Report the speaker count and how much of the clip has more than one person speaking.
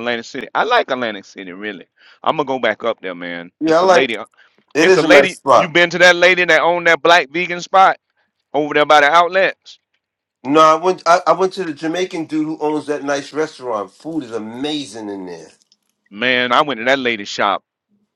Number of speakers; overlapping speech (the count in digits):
2, about 7%